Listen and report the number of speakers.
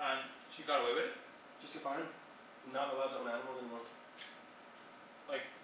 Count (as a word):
two